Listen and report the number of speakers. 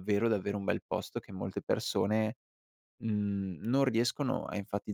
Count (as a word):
one